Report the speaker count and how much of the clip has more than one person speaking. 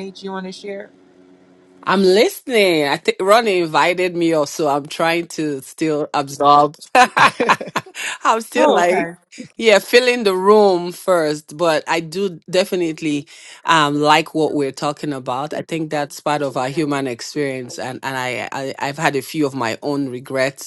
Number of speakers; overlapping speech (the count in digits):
2, about 2%